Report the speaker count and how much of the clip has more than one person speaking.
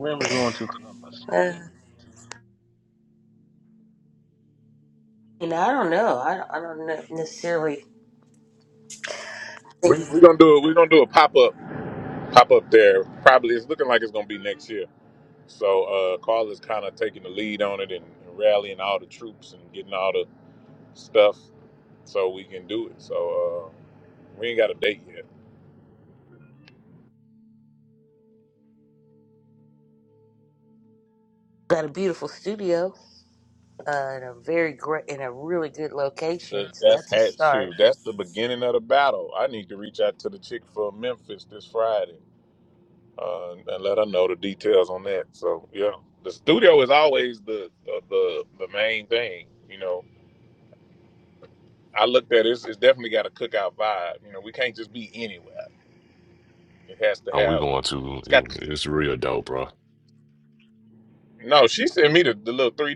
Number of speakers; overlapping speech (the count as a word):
four, about 3%